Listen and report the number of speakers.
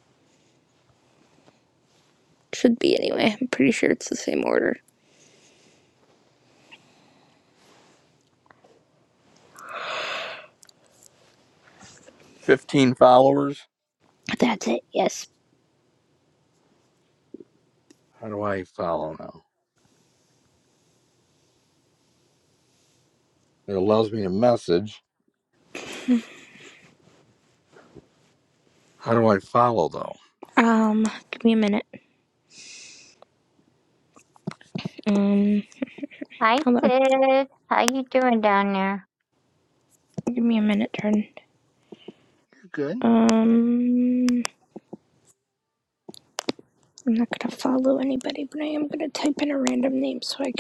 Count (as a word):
three